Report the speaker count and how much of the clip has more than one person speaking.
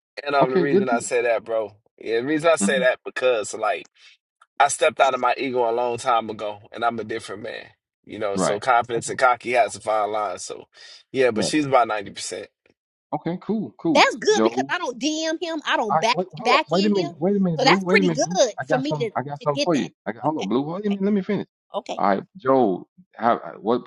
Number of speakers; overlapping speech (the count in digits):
3, about 25%